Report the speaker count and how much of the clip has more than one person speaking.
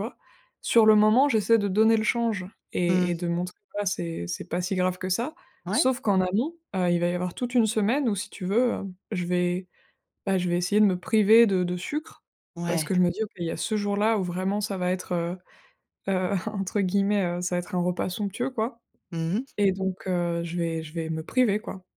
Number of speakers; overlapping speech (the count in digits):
2, about 3%